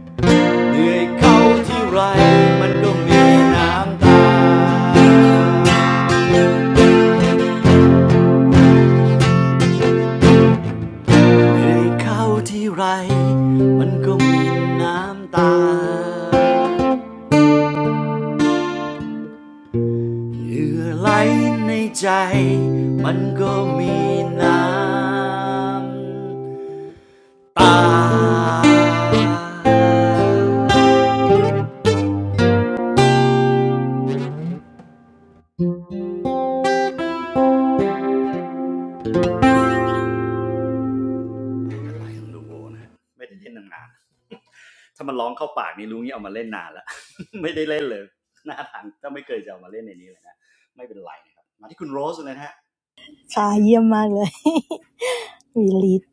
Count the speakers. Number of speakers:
2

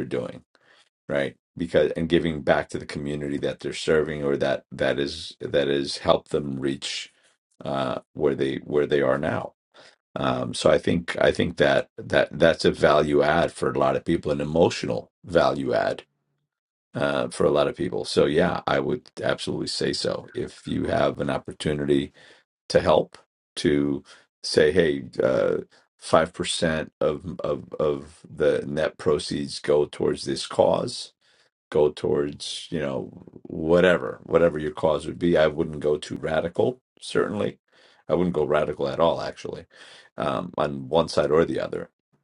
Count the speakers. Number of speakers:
1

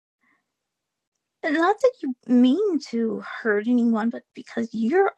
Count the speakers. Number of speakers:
1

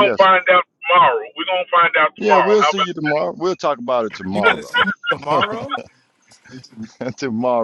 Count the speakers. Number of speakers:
3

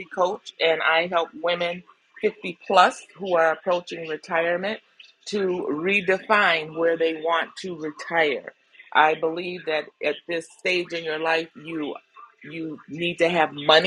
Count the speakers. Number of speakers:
1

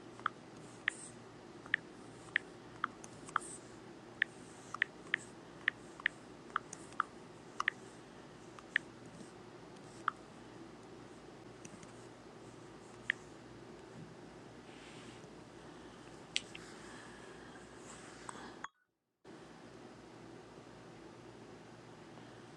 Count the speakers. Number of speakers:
0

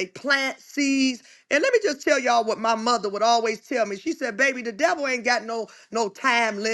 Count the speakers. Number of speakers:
1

